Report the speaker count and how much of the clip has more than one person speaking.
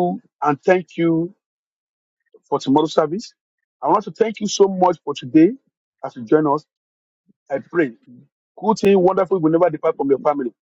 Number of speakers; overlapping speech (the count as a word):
one, no overlap